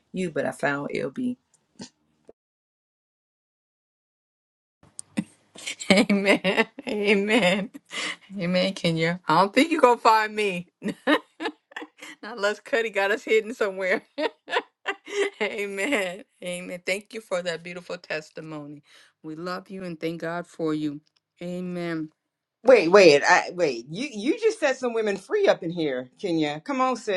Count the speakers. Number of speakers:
3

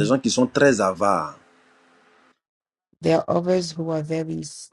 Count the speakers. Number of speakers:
2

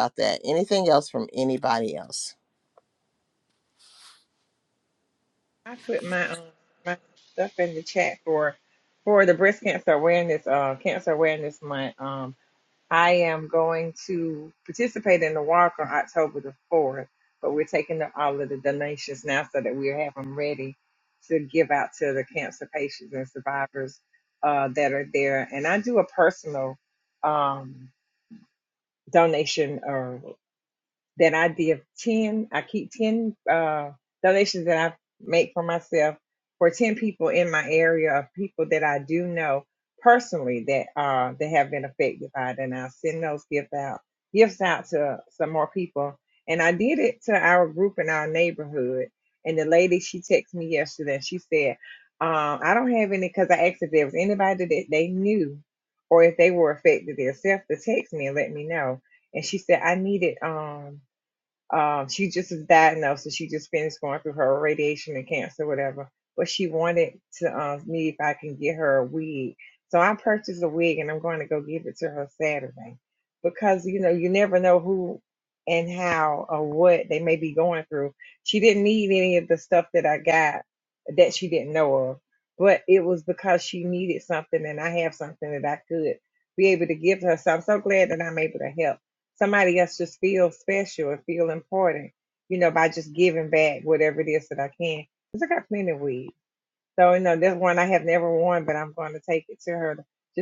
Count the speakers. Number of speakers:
2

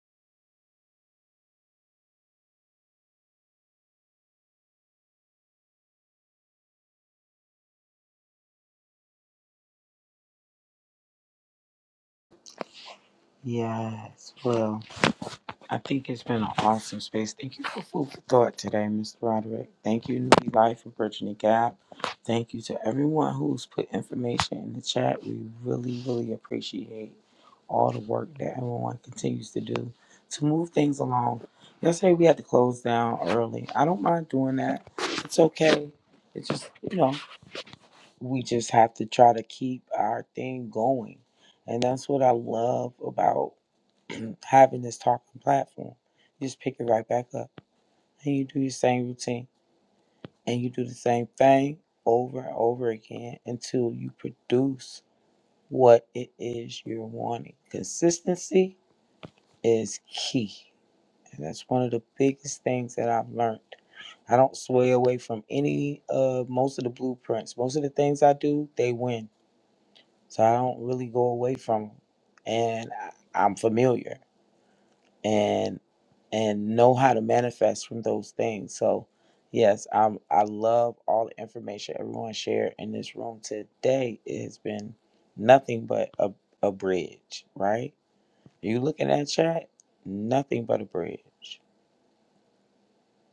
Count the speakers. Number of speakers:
1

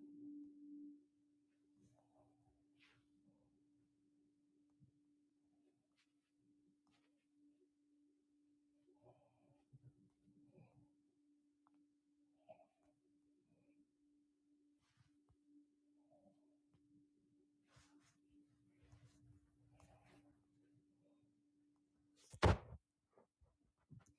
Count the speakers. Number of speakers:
0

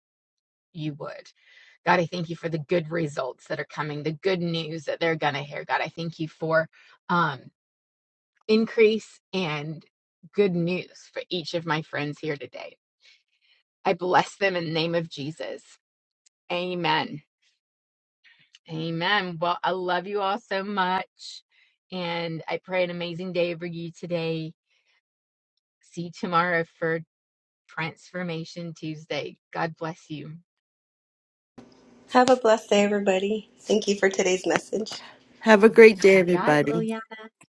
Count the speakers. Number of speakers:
3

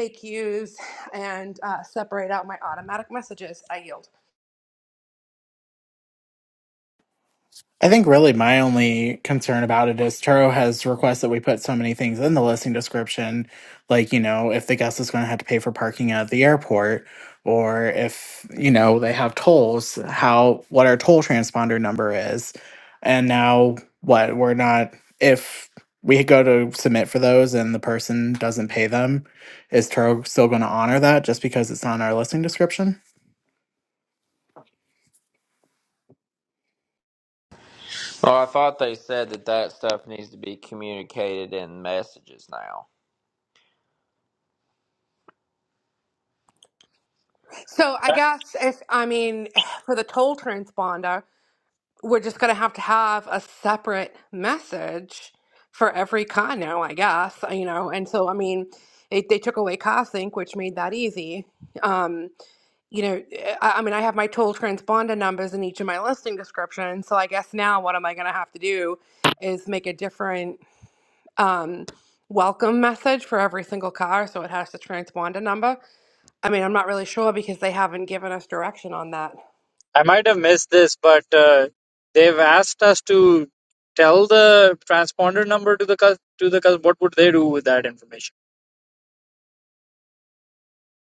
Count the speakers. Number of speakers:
4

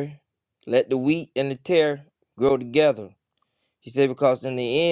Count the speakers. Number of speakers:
1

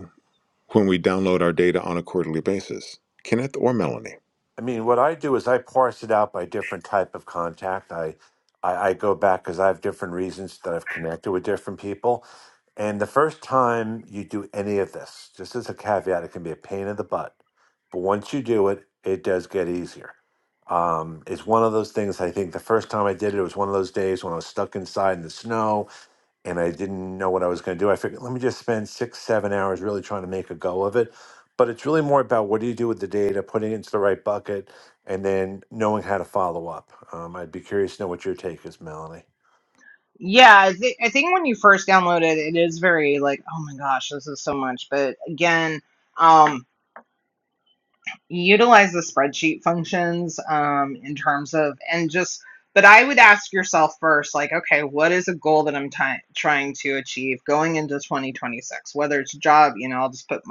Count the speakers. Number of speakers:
3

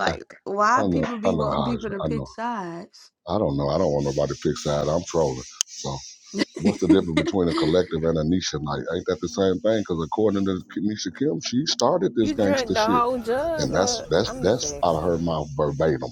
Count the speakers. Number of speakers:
3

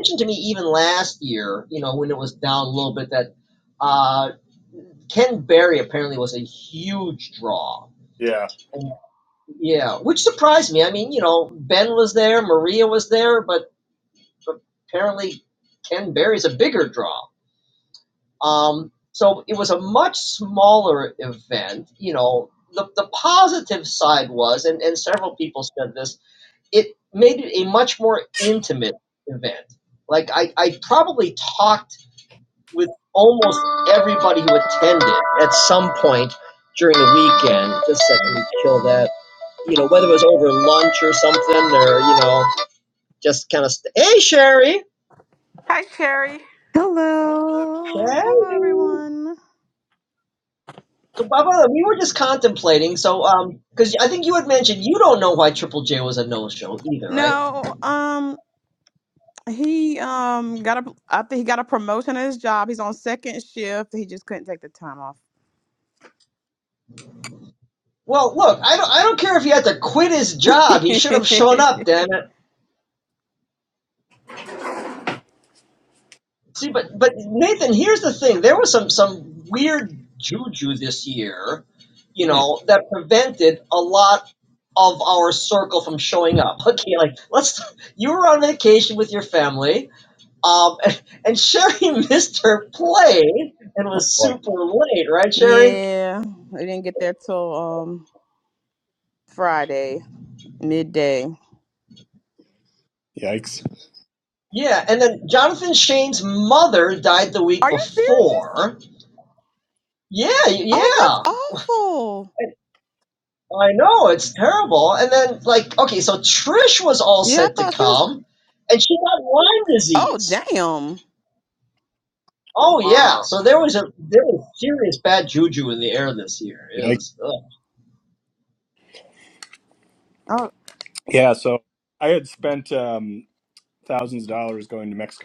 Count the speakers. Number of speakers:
4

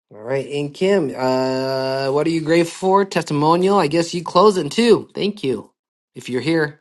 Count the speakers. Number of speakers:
1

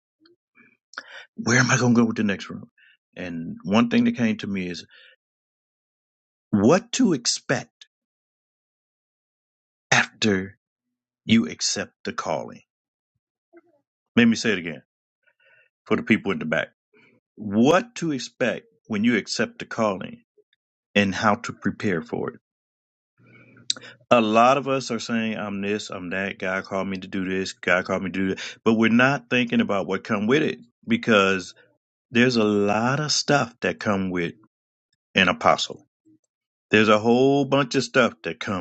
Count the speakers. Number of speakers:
1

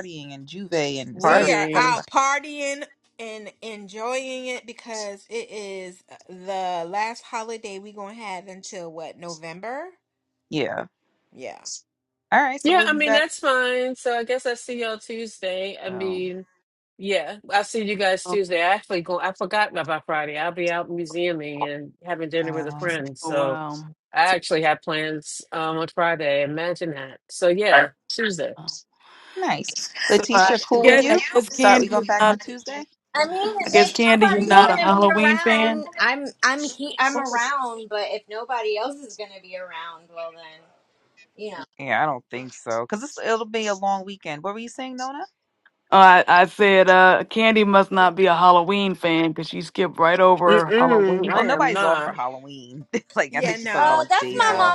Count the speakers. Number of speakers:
5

